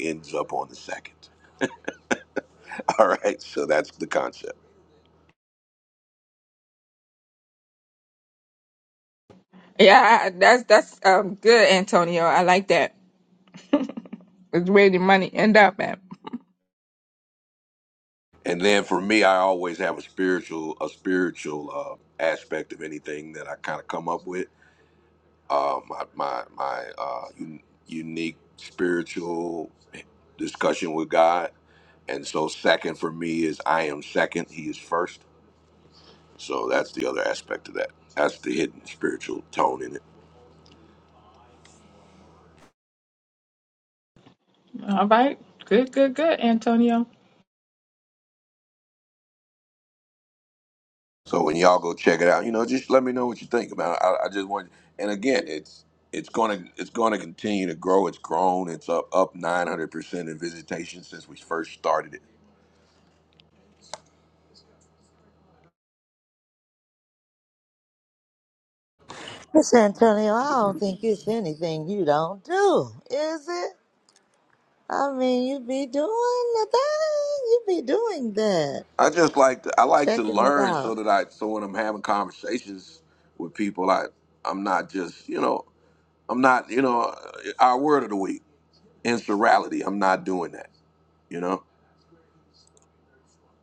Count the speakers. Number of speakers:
3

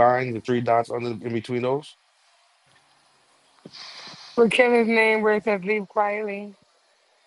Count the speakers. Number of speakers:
2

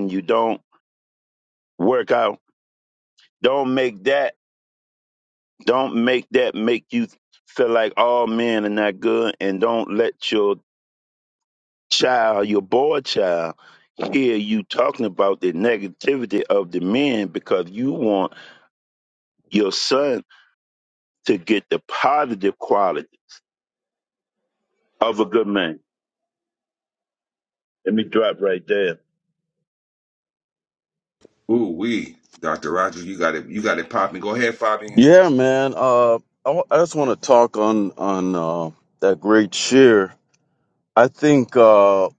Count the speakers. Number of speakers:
3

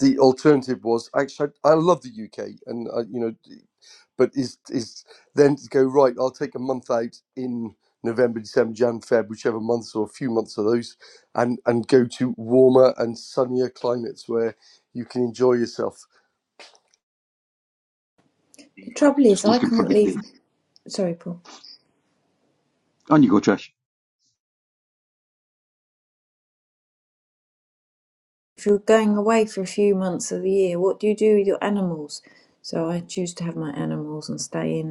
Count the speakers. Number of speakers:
3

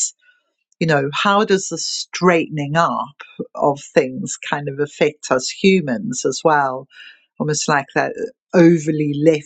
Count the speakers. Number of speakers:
1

